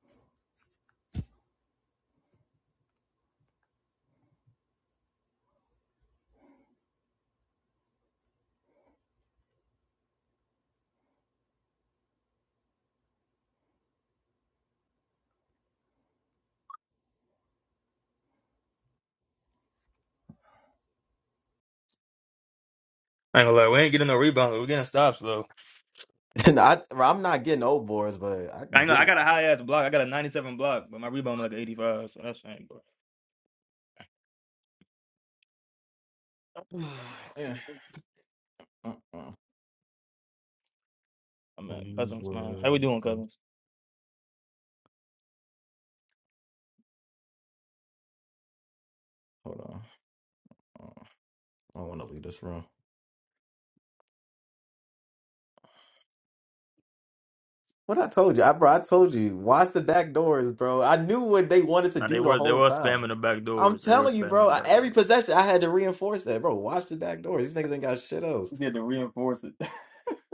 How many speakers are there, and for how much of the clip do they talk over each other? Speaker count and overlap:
two, about 4%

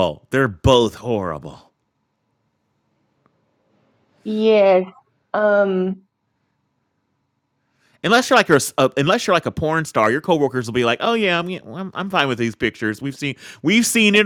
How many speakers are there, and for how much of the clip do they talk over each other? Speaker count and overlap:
two, no overlap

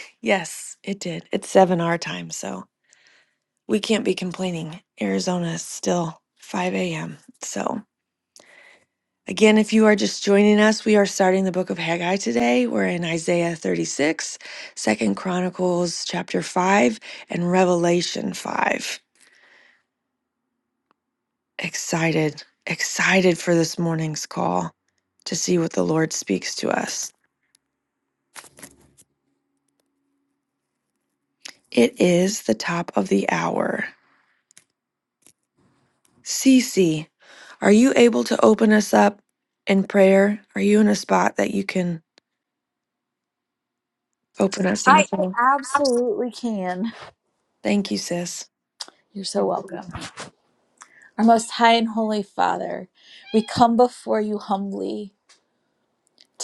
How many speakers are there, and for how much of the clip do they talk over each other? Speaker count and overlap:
two, about 1%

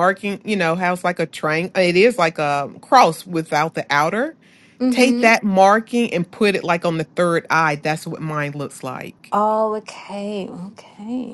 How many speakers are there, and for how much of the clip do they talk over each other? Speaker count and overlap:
two, about 4%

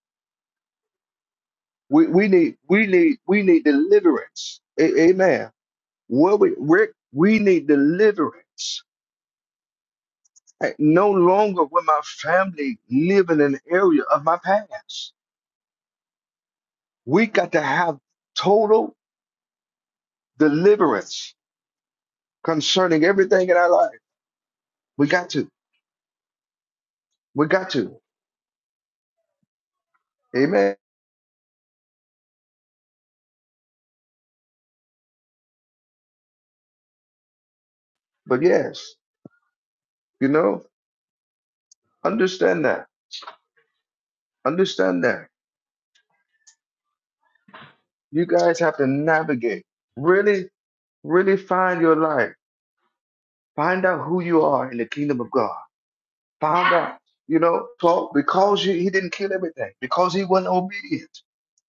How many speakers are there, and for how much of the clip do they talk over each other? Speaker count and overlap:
one, no overlap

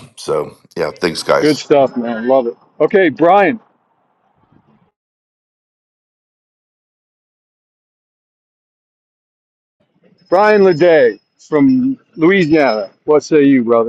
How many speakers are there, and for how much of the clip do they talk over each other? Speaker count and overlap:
two, about 1%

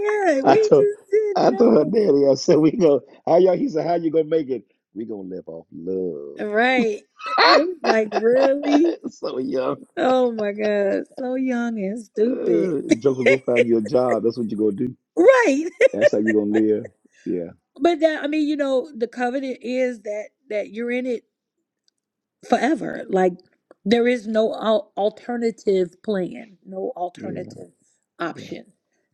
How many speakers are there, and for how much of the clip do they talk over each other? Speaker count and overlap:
two, about 7%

